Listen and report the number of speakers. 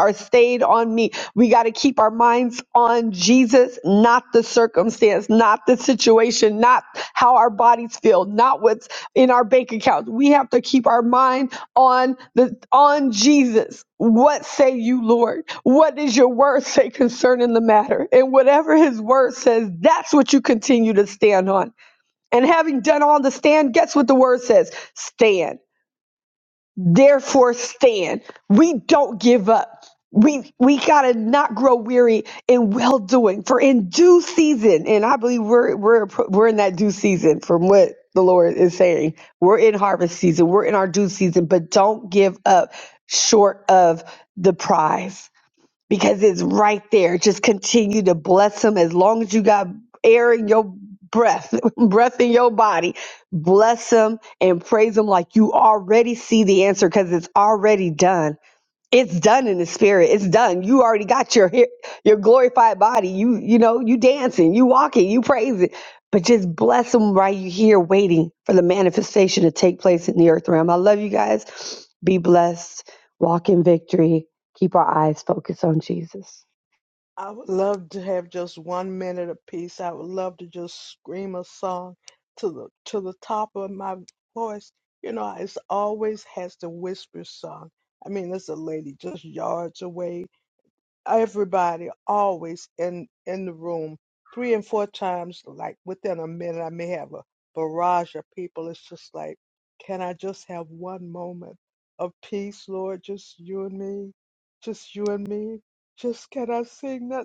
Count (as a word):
two